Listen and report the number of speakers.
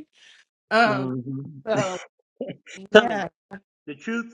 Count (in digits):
2